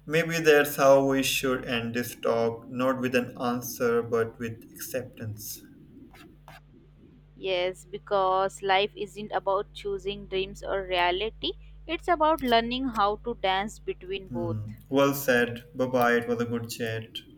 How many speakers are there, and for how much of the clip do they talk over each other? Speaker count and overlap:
2, about 1%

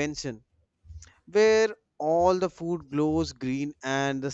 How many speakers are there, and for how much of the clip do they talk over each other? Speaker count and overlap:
1, no overlap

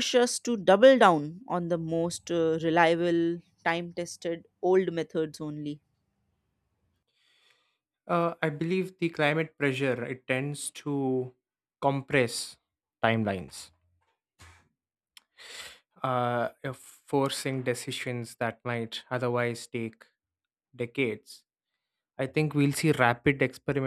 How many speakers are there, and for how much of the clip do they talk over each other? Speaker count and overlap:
2, no overlap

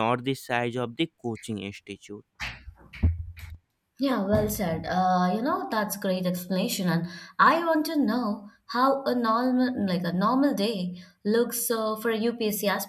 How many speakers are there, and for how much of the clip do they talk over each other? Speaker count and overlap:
2, no overlap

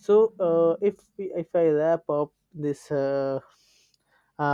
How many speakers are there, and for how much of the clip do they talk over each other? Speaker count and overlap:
1, no overlap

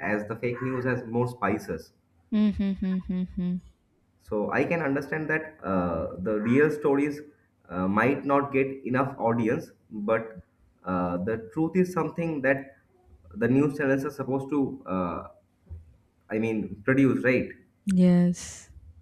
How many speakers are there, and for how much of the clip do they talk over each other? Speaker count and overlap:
2, no overlap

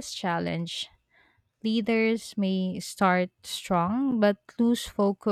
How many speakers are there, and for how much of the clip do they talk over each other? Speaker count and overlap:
1, no overlap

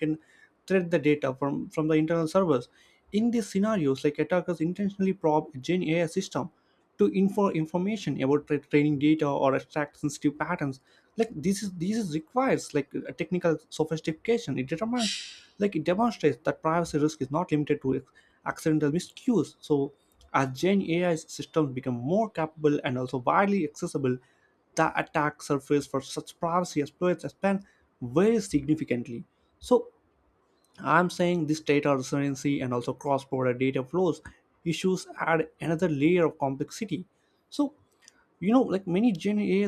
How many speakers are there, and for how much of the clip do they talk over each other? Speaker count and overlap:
1, no overlap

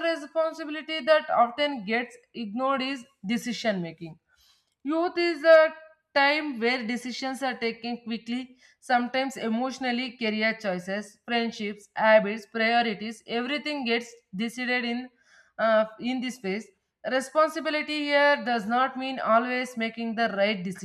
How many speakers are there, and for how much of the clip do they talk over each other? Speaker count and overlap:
1, no overlap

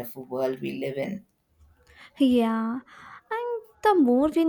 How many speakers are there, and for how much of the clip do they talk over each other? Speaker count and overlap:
2, no overlap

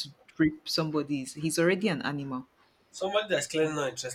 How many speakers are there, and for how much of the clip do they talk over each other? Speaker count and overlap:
2, no overlap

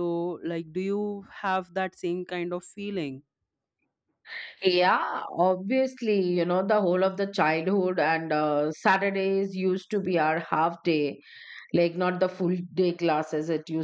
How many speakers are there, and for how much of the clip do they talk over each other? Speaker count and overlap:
2, no overlap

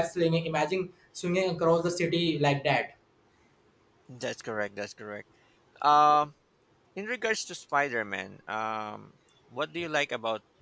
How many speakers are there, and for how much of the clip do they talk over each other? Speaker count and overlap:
2, no overlap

